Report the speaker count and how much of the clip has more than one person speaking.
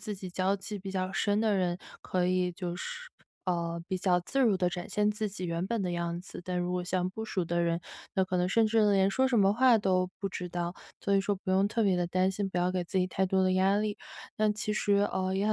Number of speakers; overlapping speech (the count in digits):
1, no overlap